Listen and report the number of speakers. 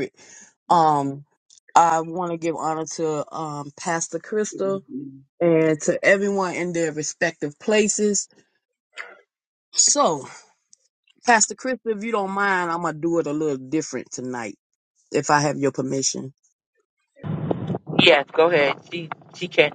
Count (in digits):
2